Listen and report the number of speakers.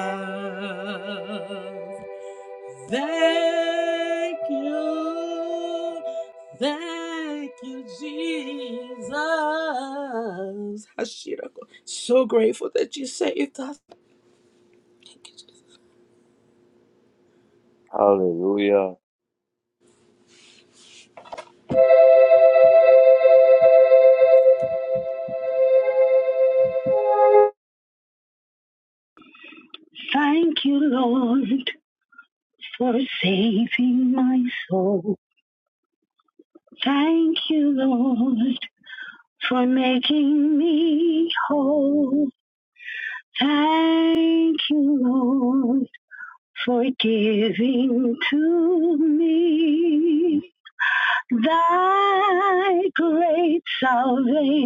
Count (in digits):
3